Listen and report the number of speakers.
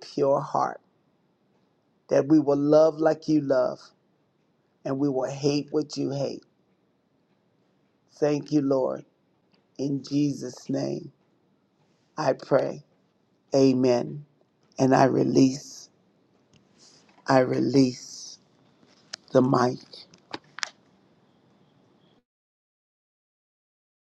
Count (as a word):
one